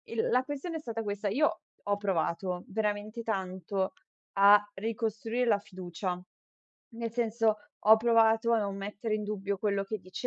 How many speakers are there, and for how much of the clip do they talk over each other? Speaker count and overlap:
1, no overlap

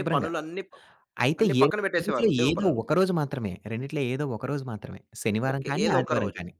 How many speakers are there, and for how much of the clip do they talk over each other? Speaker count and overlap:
2, about 41%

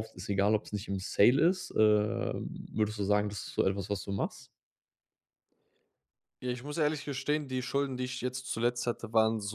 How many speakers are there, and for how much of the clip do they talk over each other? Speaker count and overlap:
2, no overlap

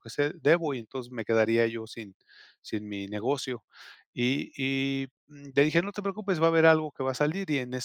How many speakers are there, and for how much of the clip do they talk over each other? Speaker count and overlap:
1, no overlap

